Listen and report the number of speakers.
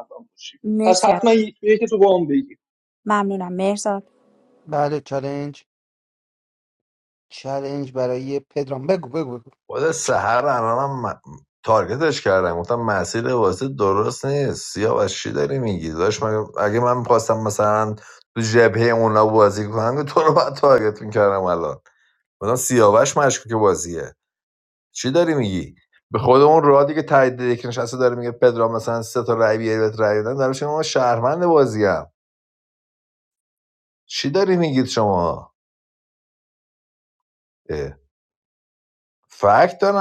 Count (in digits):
4